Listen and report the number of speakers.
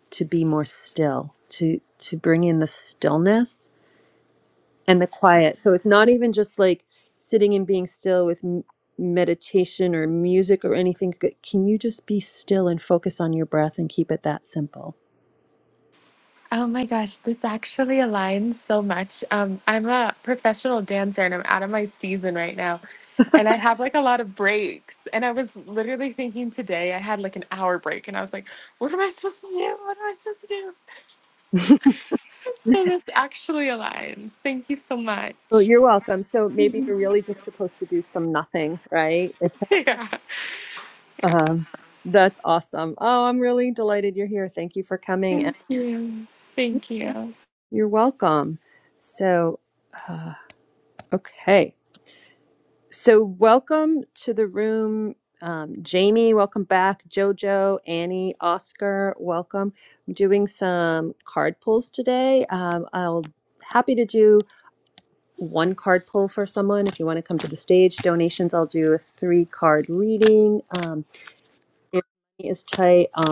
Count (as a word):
two